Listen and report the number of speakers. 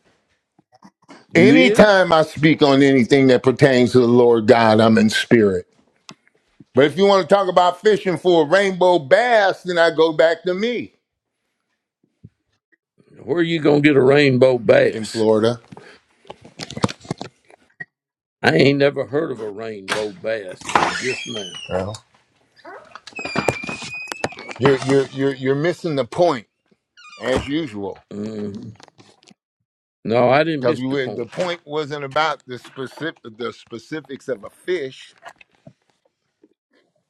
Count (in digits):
2